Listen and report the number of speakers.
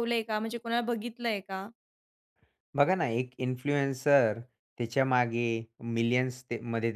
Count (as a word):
two